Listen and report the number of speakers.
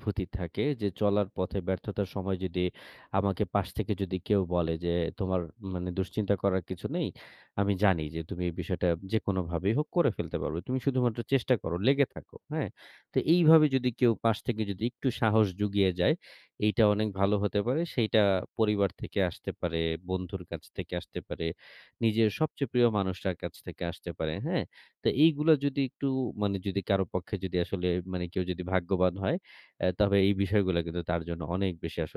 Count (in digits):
1